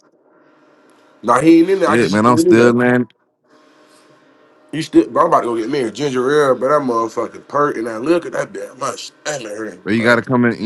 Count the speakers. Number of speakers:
2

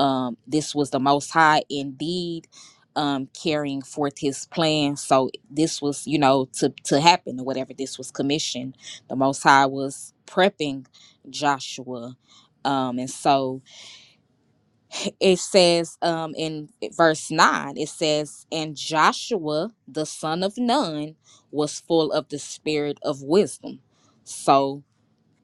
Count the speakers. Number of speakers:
1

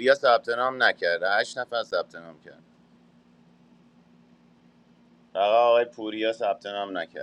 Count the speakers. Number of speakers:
1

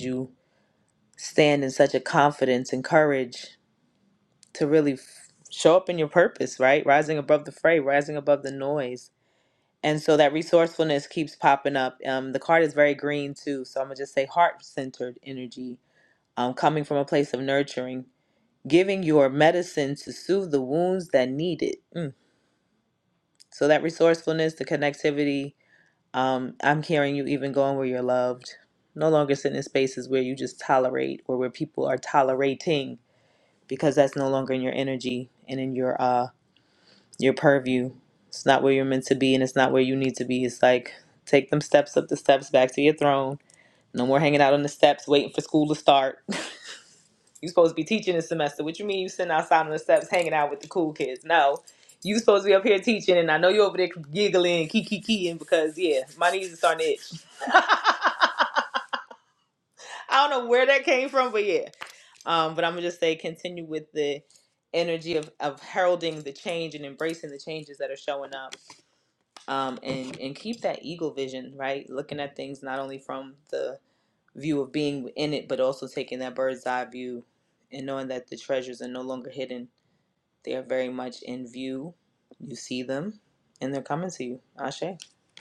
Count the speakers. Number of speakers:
1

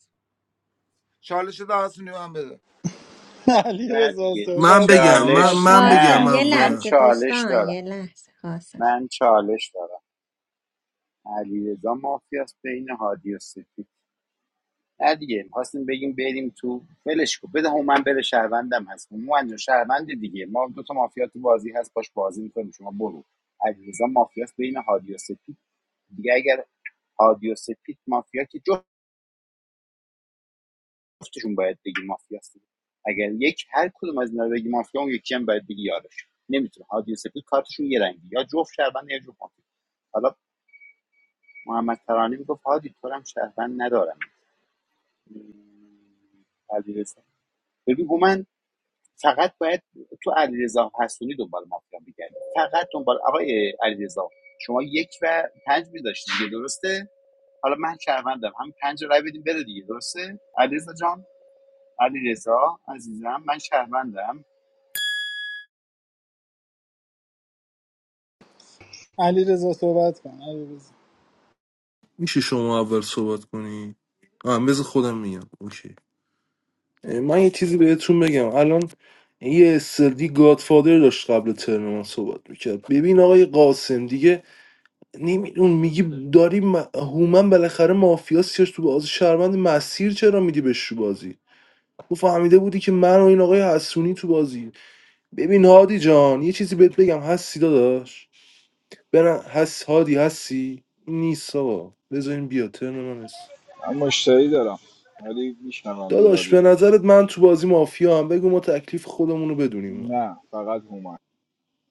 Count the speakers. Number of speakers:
6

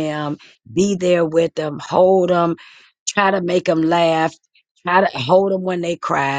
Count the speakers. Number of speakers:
1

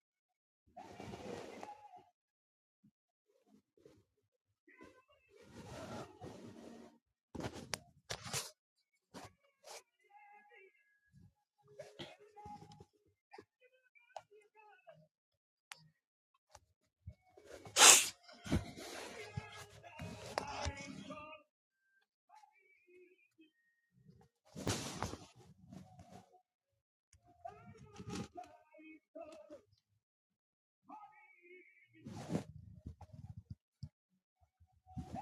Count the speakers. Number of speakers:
0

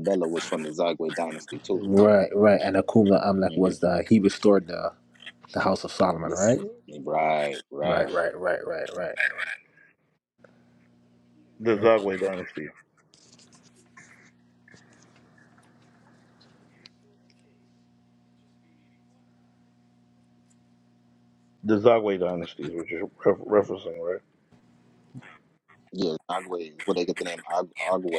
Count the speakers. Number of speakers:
3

